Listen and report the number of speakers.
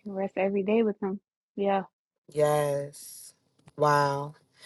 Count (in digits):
2